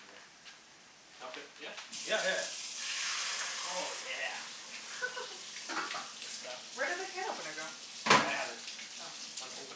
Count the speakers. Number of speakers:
three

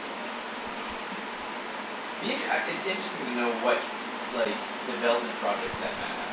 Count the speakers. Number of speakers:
one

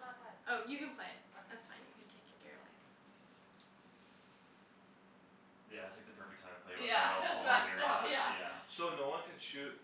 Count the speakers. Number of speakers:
four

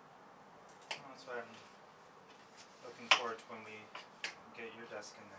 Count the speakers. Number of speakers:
one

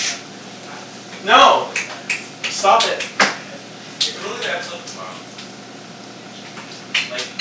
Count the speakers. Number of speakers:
two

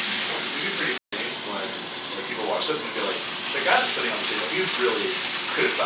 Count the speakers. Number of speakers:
one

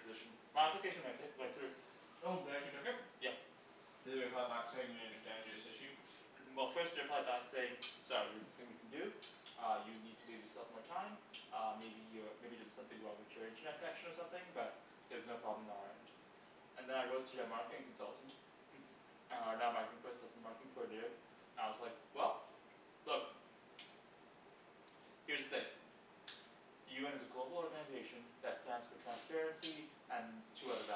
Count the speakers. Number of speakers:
two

